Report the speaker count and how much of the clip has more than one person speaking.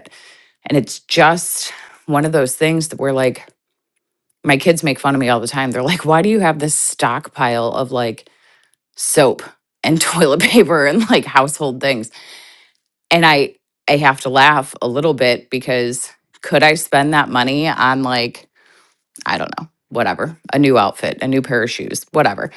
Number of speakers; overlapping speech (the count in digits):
1, no overlap